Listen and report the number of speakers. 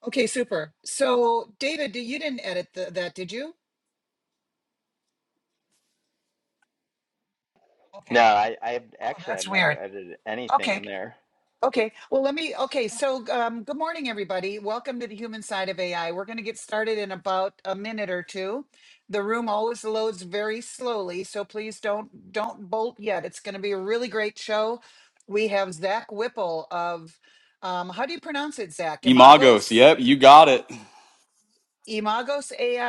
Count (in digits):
3